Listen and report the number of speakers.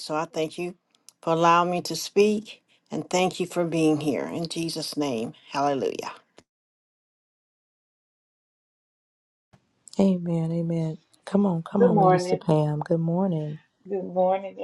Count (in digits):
3